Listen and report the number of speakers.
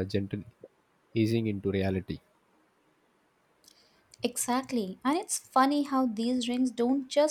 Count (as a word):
two